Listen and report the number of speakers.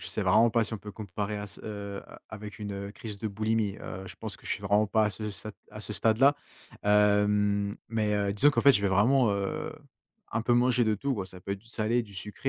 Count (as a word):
one